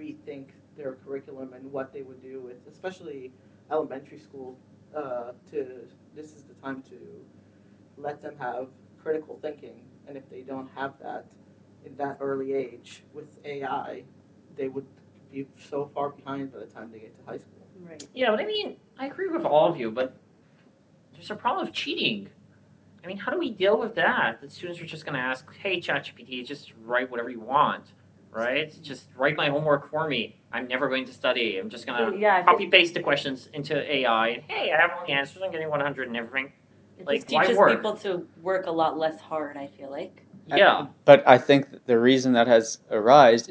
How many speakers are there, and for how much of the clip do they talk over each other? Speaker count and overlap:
4, about 5%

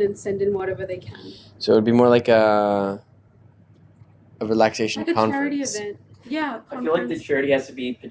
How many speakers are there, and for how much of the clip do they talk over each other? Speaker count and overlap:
3, about 16%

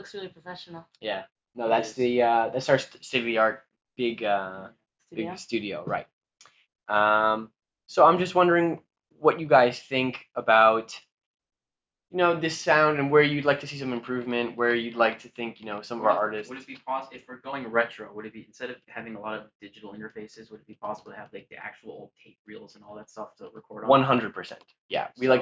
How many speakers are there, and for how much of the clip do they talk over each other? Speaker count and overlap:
3, about 9%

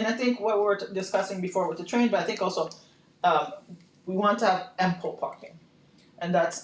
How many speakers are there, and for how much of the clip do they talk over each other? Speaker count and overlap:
1, no overlap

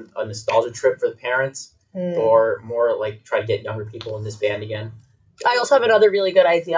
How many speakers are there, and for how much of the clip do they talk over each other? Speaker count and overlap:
2, about 8%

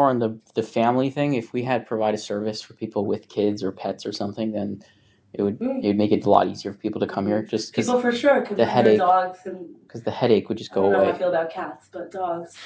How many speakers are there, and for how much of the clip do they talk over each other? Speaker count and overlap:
2, about 19%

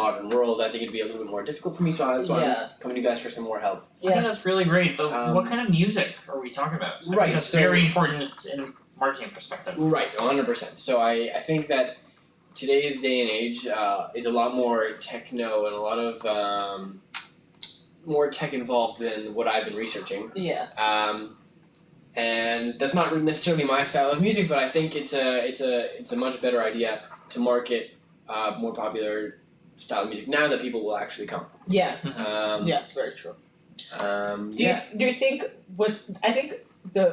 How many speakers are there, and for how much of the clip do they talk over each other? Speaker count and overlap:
3, about 7%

